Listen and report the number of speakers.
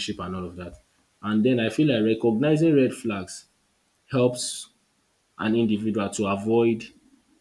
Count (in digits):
1